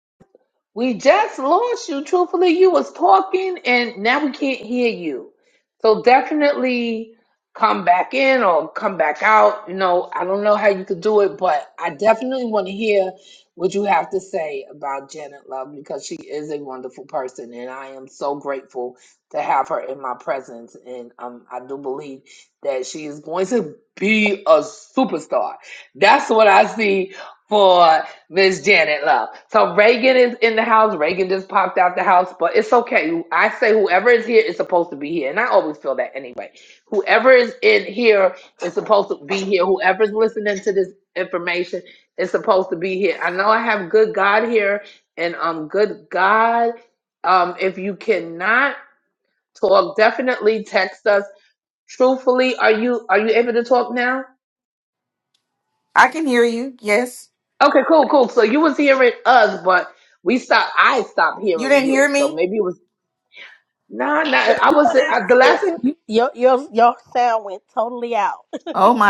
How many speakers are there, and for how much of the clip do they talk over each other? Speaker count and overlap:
3, about 3%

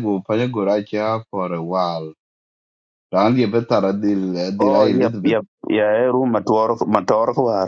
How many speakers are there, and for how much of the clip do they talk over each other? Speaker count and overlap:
2, about 10%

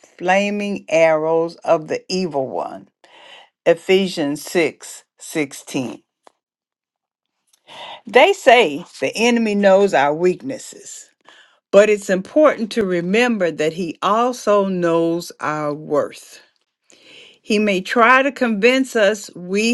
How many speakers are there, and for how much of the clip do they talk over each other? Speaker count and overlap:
1, no overlap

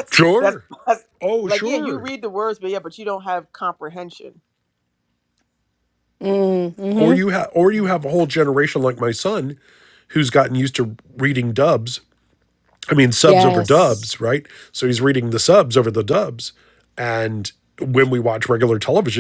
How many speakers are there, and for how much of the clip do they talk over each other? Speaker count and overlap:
3, about 7%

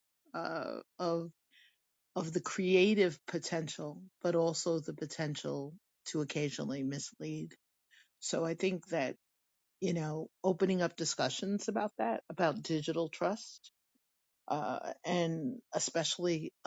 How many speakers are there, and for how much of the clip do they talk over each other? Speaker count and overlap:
1, no overlap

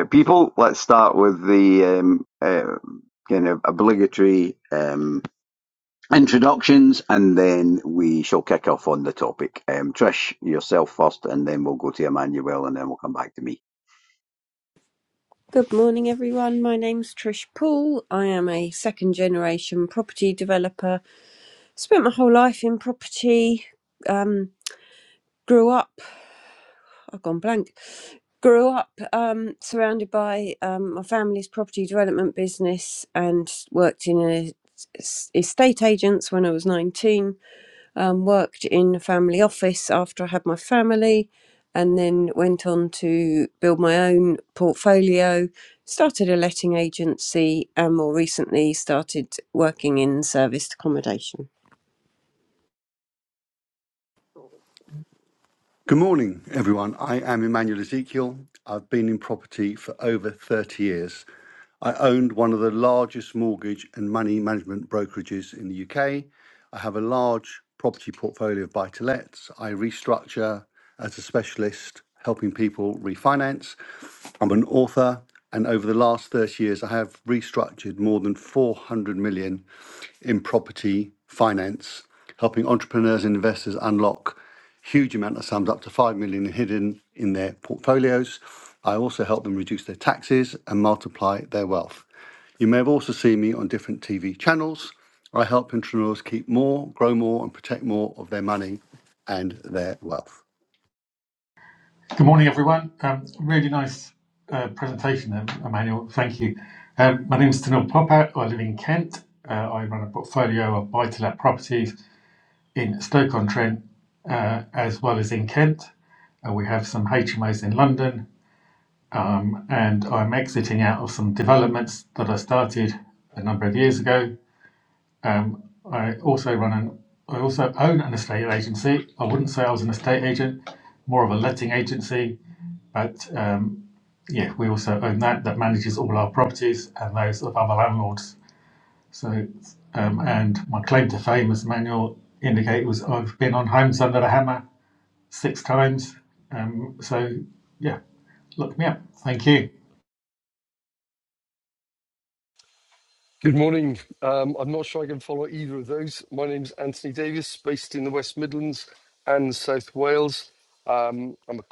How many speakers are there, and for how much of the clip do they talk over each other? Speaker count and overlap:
5, no overlap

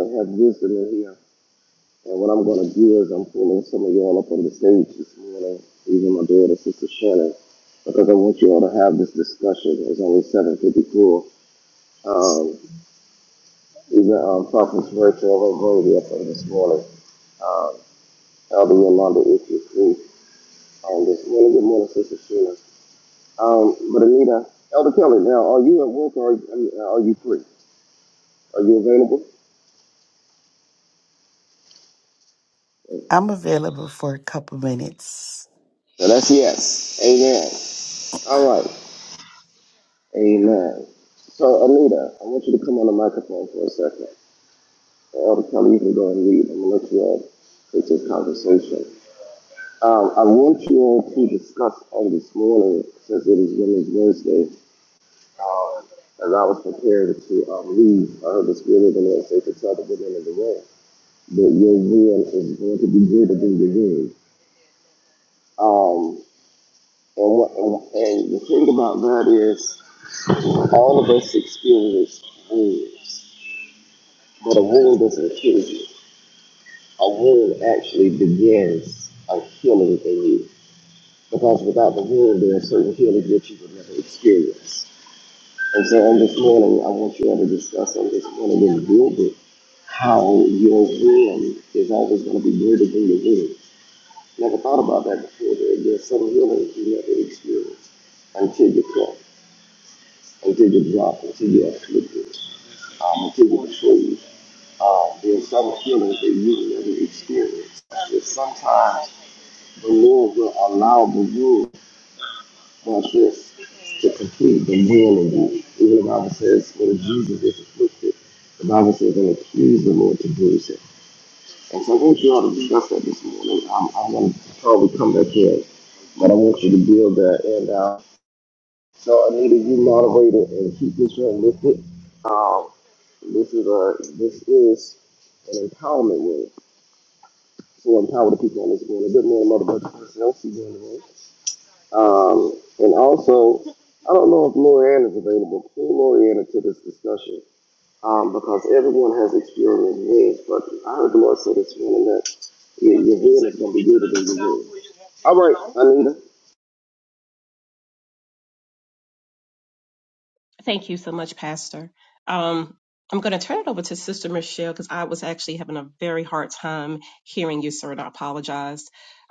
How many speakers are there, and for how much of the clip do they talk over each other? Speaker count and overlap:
3, no overlap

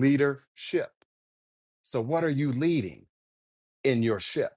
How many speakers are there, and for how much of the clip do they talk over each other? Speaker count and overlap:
1, no overlap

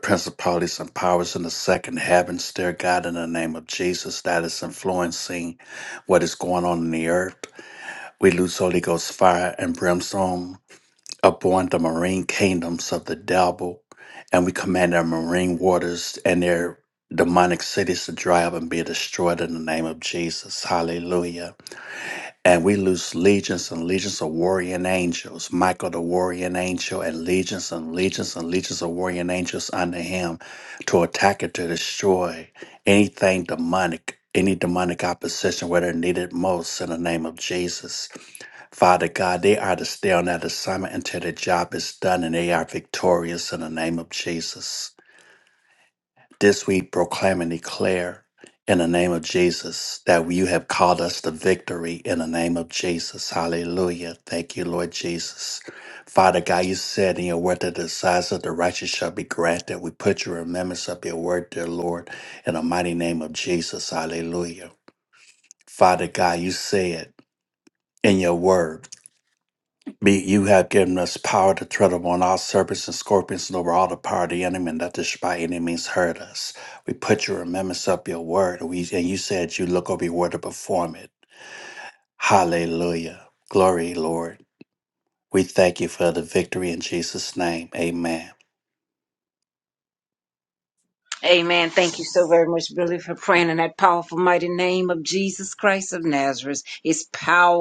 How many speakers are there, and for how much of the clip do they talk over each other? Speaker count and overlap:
2, no overlap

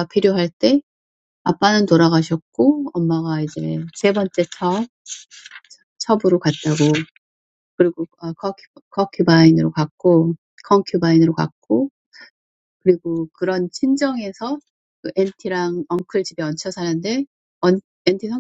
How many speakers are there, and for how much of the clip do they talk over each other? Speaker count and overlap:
1, no overlap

